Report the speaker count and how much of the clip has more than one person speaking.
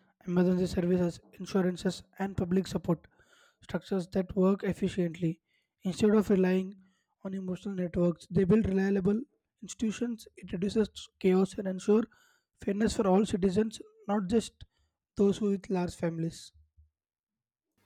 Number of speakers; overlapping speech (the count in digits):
1, no overlap